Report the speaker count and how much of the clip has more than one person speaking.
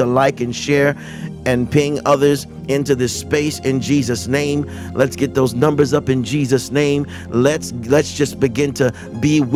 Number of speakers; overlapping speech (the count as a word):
one, no overlap